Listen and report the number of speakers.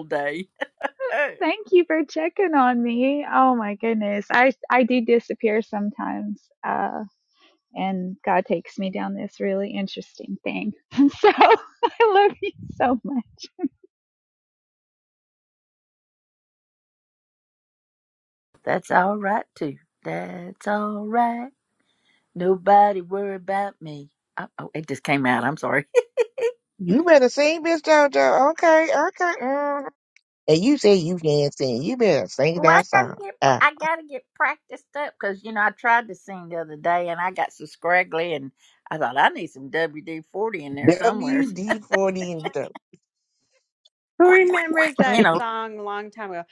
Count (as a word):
four